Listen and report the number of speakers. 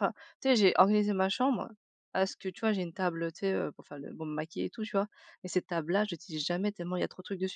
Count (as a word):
one